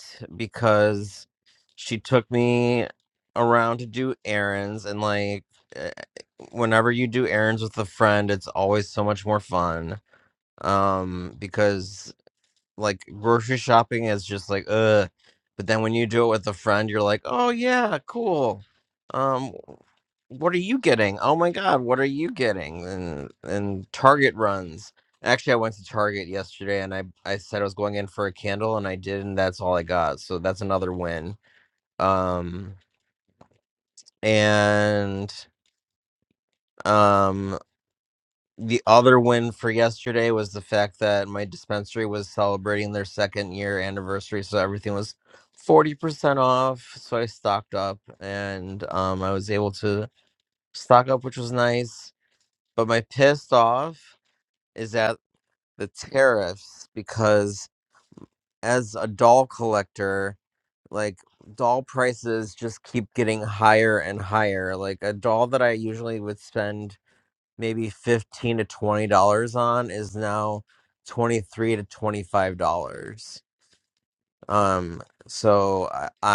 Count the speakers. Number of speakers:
1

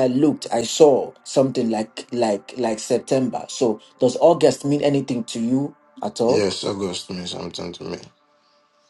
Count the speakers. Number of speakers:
2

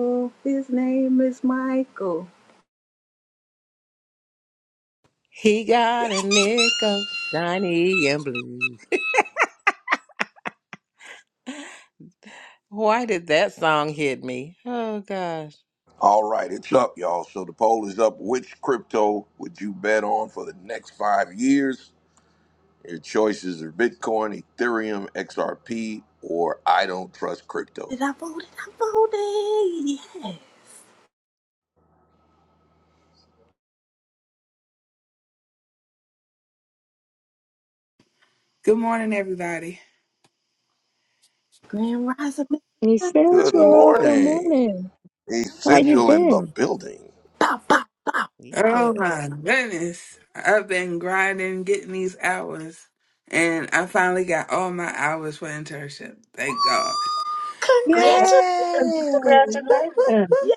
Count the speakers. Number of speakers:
6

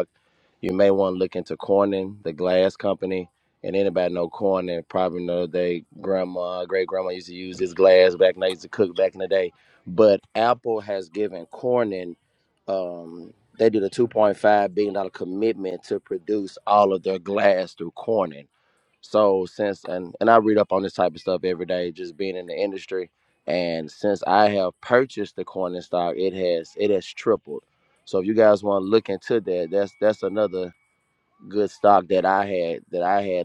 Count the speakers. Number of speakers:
1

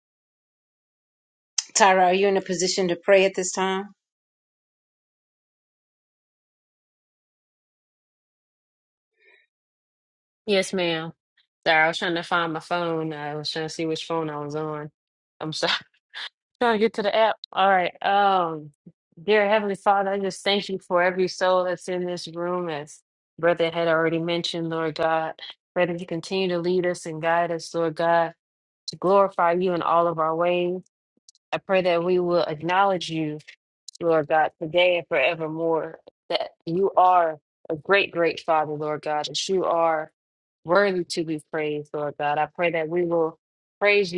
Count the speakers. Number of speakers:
2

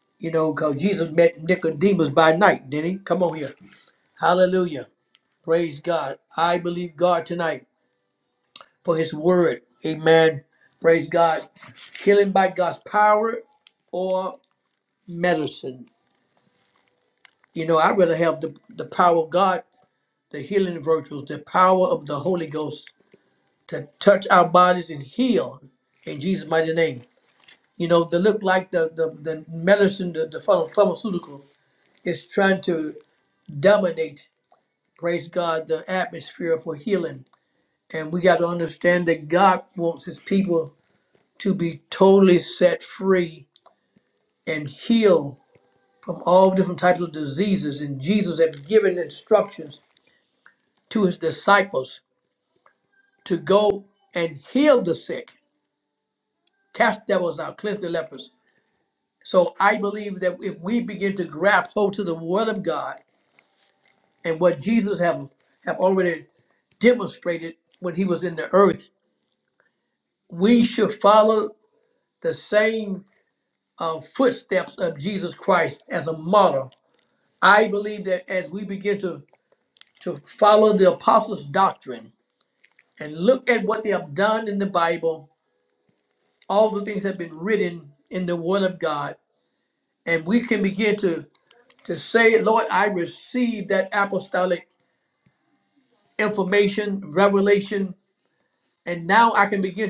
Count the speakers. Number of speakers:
1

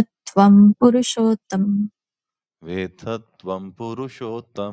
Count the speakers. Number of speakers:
2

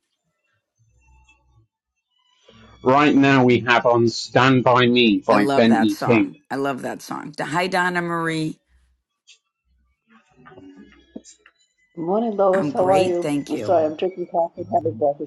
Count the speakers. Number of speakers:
3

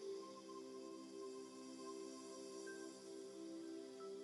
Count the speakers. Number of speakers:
0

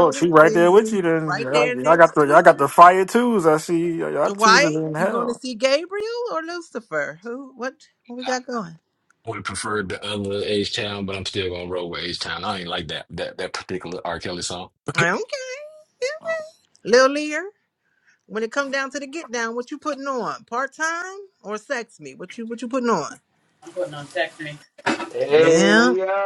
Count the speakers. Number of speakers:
5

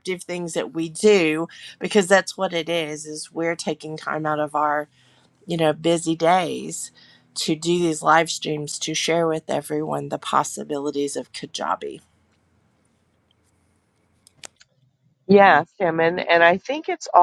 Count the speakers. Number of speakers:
2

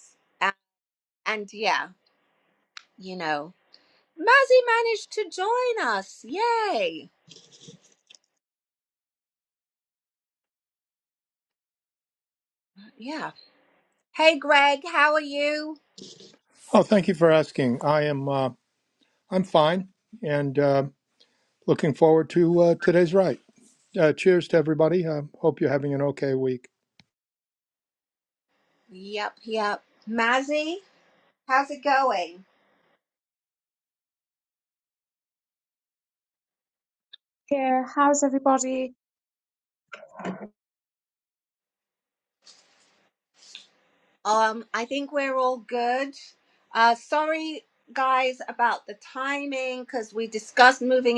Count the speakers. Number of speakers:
3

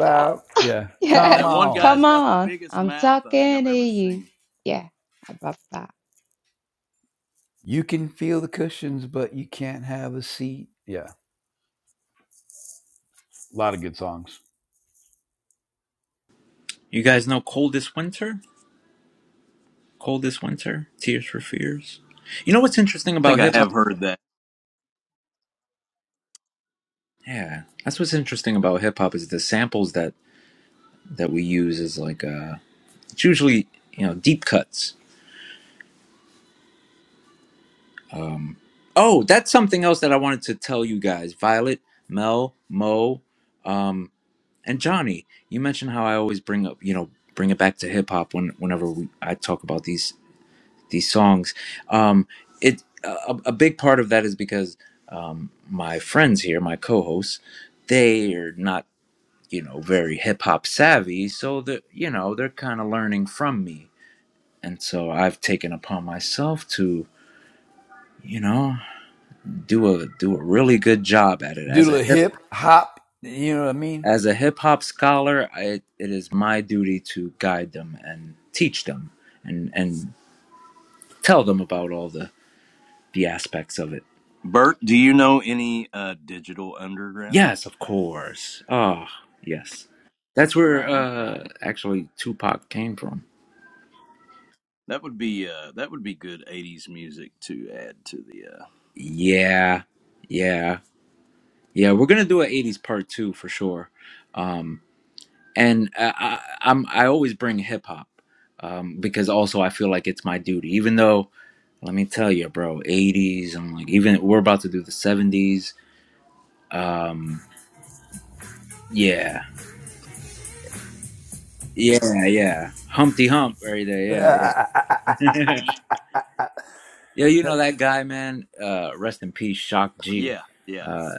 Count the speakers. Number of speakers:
4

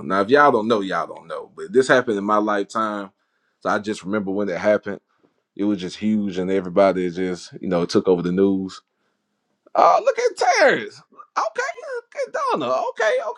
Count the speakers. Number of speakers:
1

